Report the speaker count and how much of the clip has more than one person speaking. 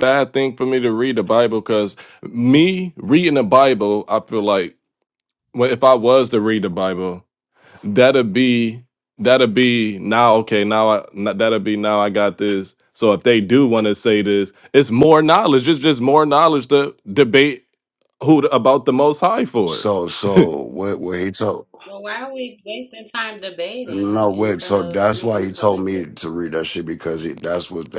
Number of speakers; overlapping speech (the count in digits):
3, about 10%